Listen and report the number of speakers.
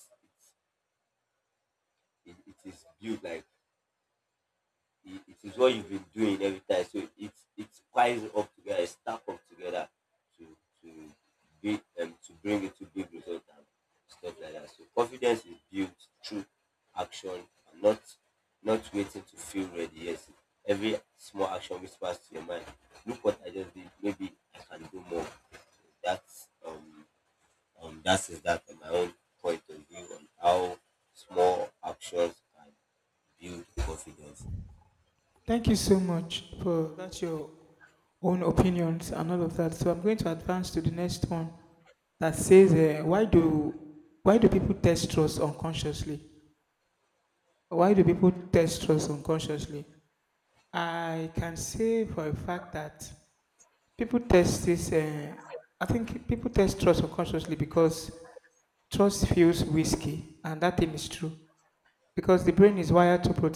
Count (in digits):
2